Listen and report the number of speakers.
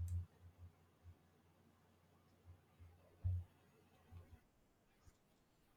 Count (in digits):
0